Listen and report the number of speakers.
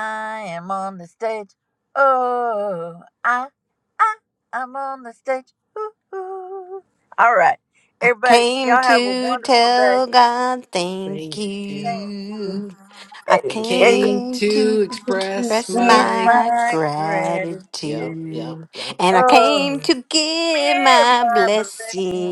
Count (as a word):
three